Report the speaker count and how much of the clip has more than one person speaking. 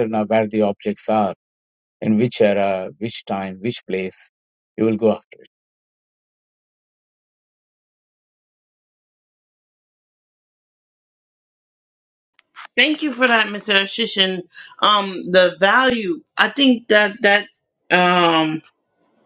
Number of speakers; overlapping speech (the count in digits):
2, no overlap